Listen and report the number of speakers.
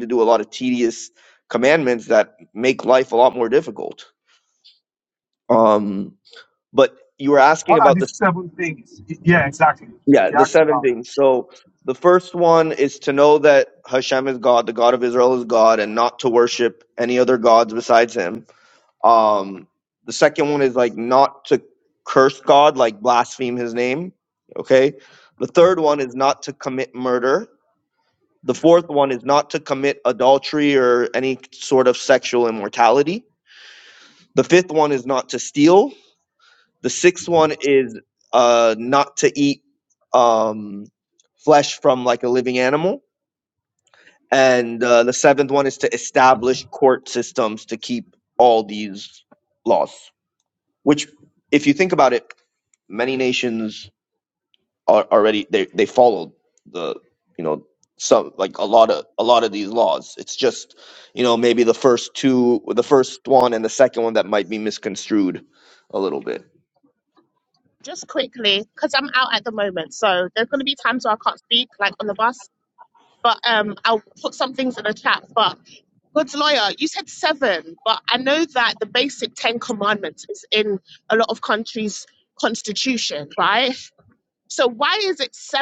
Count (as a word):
three